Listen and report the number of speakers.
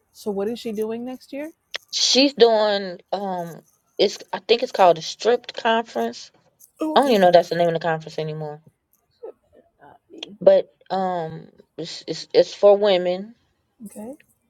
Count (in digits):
2